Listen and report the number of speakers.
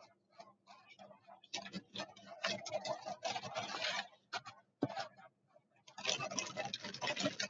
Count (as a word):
zero